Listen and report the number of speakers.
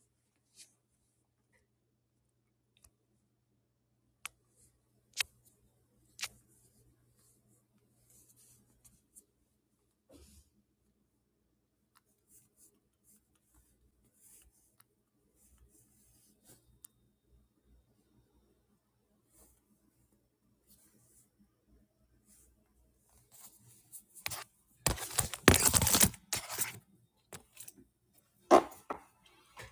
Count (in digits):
0